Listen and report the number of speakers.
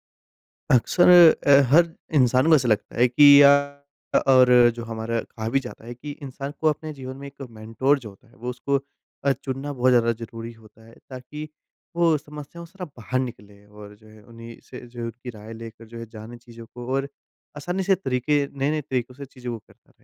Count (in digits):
1